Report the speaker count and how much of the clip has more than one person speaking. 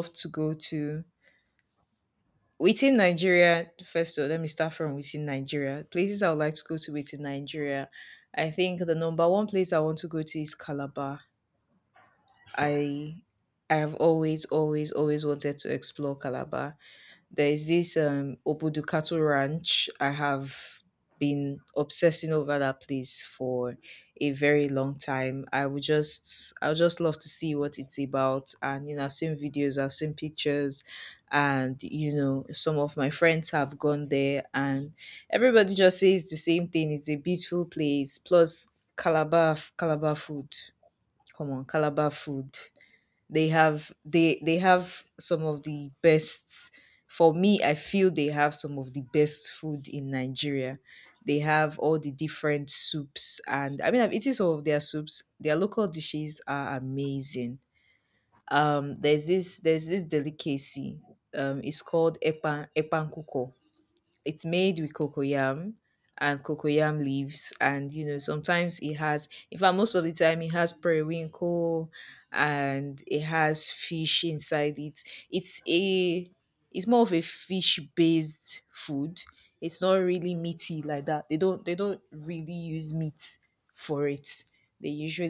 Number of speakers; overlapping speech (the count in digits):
1, no overlap